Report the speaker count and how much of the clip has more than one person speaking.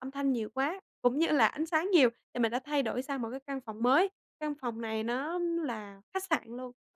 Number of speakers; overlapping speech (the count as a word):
one, no overlap